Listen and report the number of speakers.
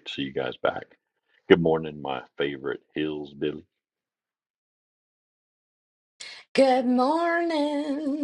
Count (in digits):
2